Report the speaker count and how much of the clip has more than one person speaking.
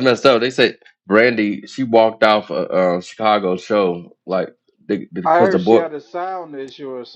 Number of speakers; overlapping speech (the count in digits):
2, about 9%